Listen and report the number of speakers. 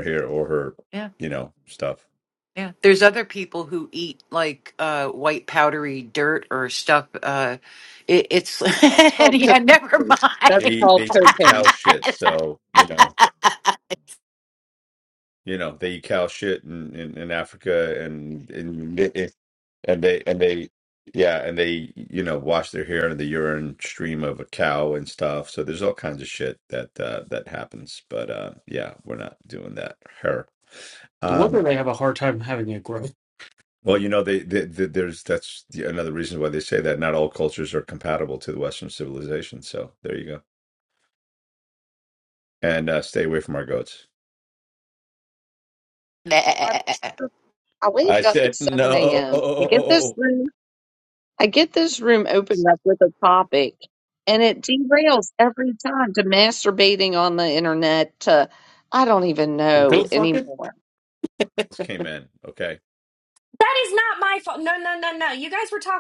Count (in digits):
5